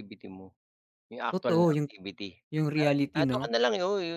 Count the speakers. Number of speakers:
two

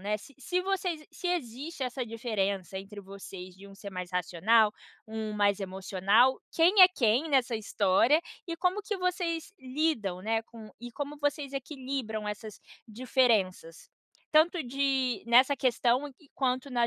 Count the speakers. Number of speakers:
one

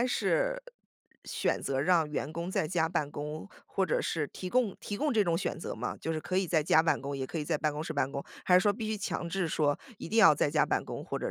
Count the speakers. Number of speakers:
one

